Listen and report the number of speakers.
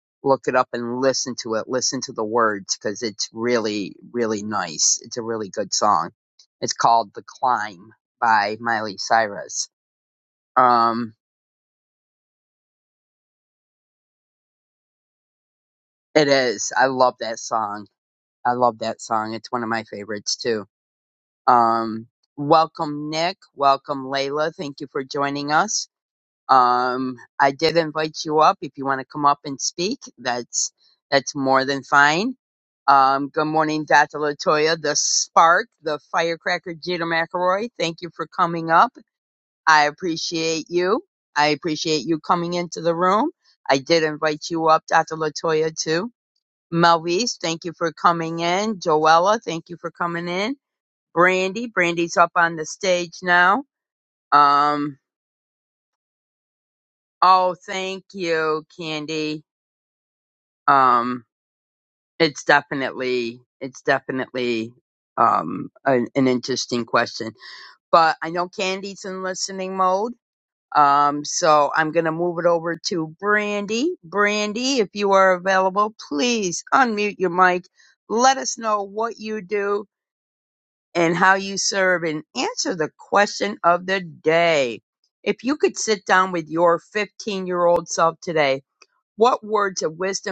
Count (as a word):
one